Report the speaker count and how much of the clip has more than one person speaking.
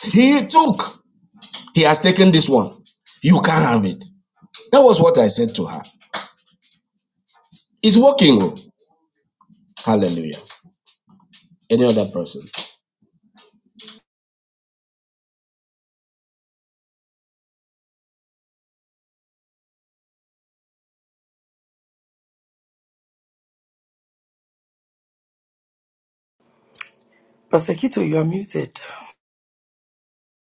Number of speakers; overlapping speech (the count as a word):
two, no overlap